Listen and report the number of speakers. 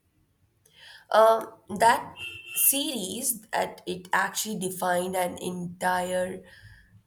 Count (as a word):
one